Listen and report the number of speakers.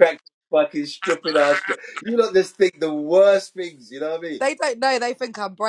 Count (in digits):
2